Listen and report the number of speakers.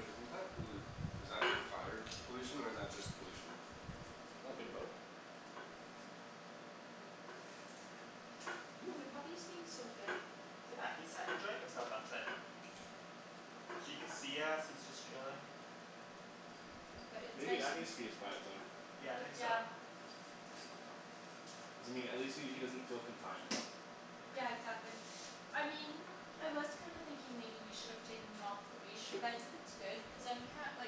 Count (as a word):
four